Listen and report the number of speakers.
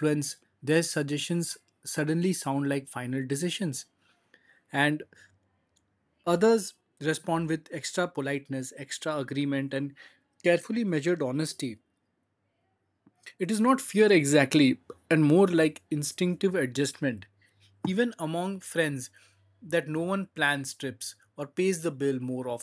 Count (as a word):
one